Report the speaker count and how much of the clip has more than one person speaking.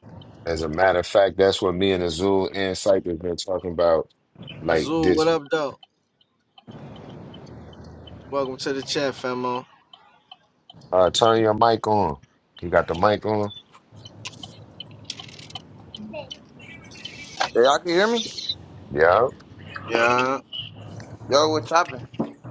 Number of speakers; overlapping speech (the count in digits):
3, about 3%